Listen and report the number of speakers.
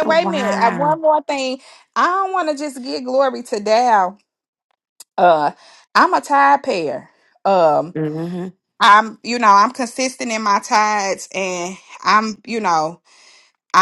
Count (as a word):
two